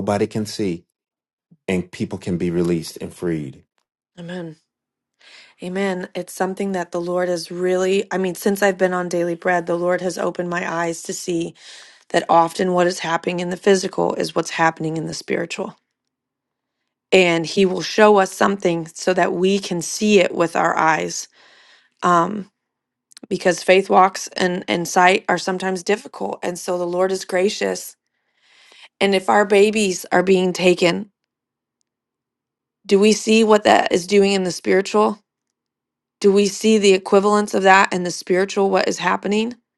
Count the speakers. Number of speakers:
2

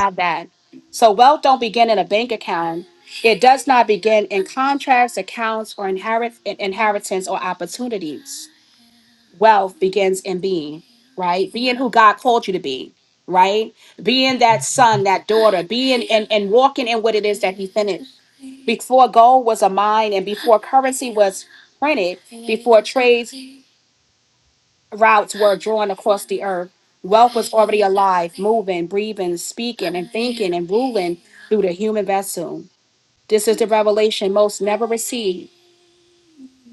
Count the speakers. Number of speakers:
1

